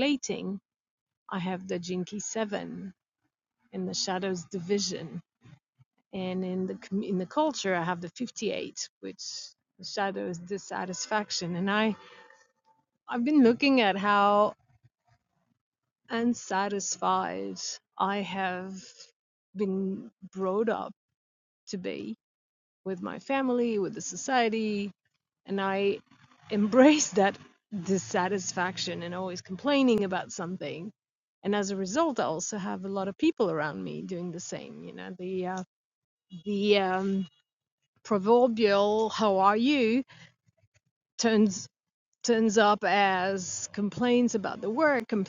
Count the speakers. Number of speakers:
one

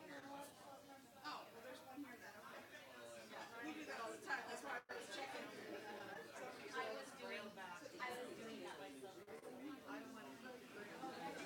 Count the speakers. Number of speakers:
zero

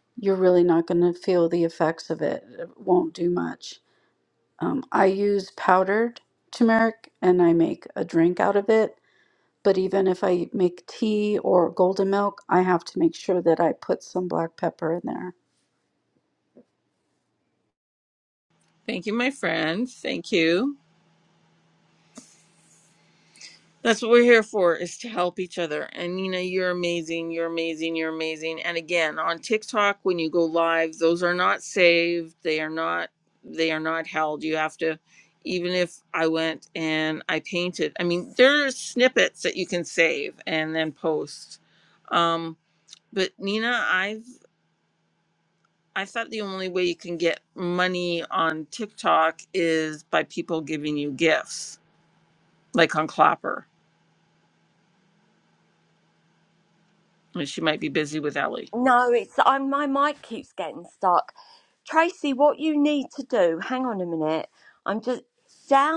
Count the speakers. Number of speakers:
three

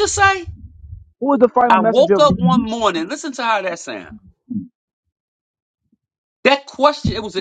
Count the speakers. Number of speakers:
two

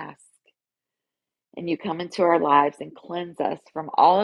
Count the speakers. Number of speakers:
one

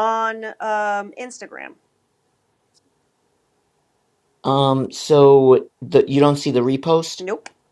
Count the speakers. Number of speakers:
two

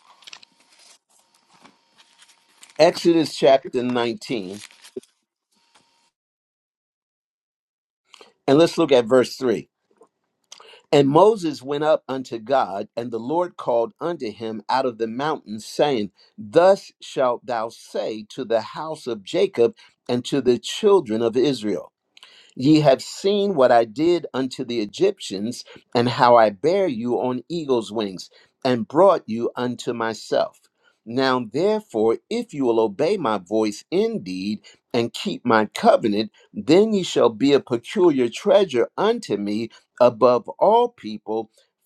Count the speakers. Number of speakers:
one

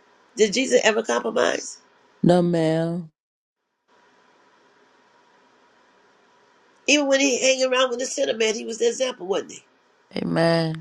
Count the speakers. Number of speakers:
two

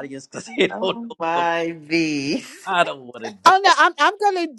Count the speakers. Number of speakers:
three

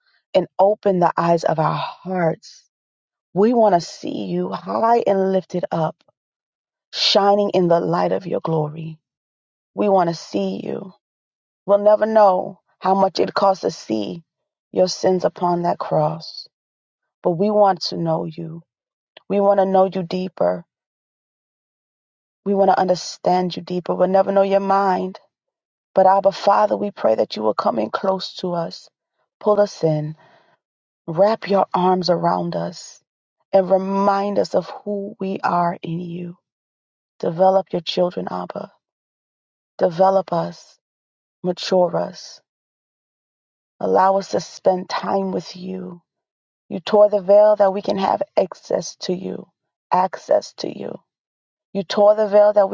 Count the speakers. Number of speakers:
one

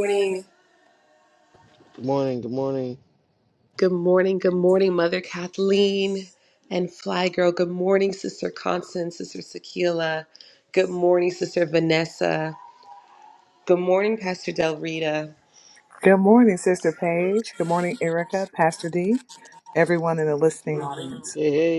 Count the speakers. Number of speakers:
three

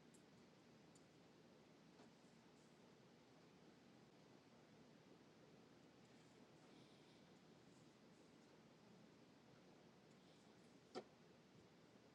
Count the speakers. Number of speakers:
zero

